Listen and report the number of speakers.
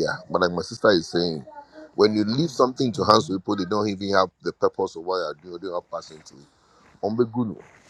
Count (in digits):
1